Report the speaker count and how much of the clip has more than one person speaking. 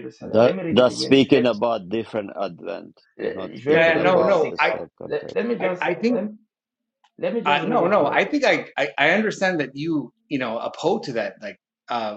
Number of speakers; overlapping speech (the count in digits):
3, about 37%